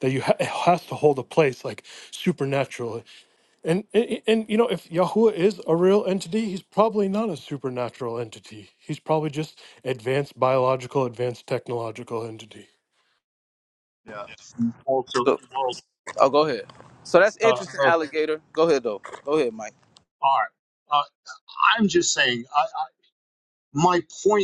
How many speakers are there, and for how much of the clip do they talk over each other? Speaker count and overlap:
3, about 2%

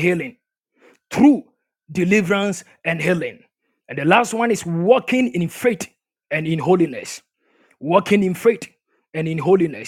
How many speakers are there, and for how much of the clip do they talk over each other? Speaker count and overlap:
1, no overlap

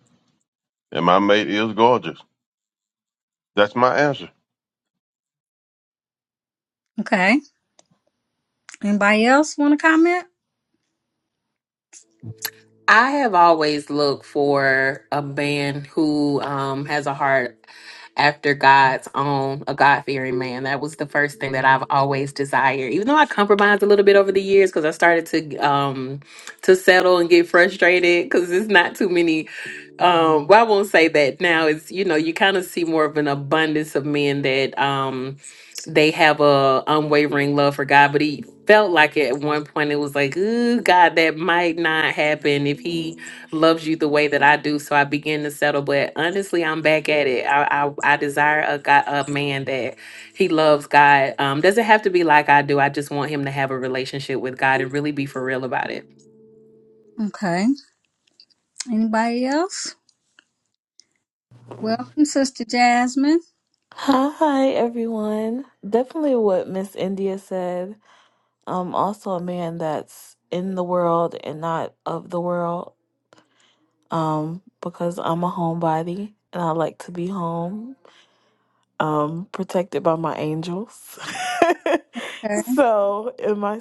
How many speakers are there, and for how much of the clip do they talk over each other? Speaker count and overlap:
4, no overlap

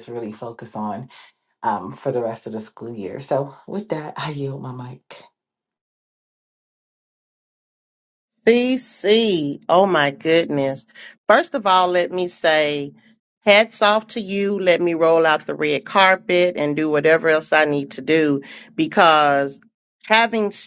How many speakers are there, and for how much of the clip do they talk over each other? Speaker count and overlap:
2, no overlap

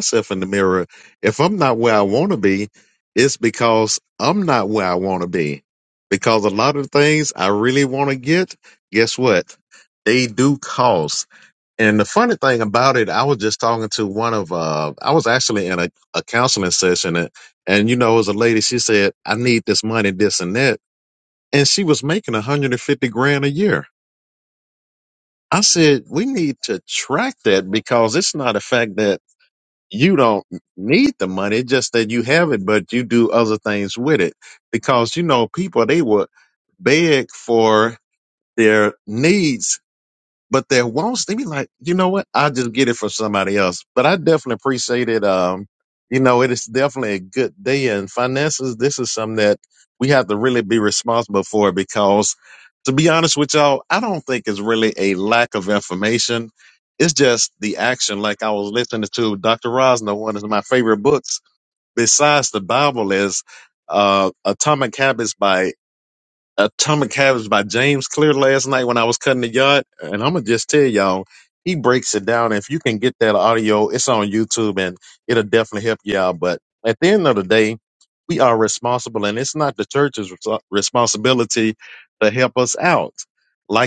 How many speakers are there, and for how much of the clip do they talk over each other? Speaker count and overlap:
1, no overlap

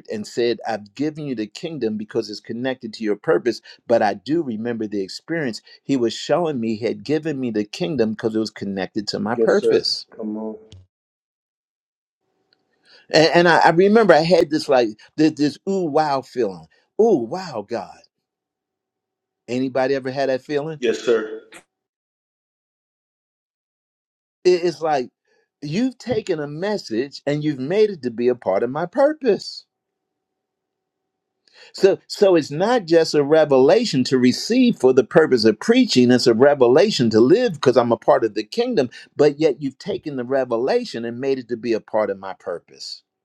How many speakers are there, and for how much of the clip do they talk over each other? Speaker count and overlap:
2, about 1%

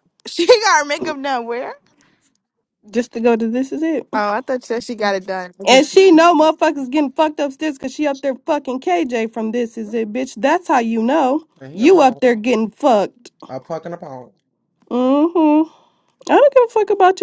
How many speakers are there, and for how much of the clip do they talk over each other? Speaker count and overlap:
3, about 3%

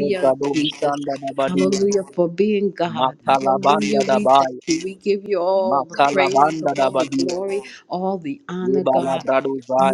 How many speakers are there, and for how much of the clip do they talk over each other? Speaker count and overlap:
2, about 54%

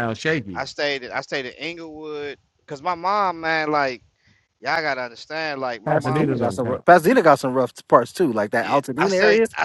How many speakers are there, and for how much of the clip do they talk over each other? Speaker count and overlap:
3, about 19%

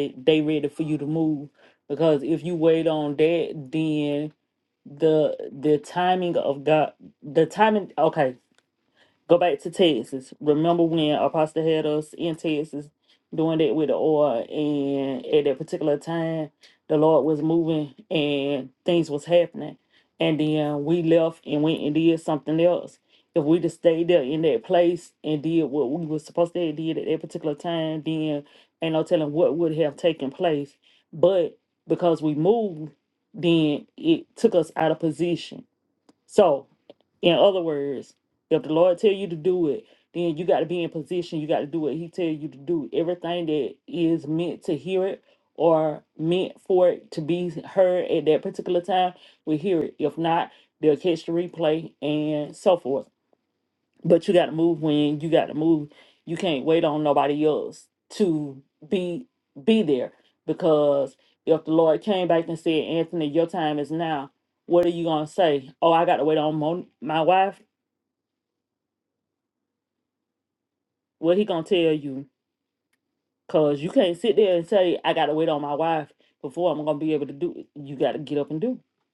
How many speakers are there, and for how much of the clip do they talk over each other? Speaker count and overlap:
1, no overlap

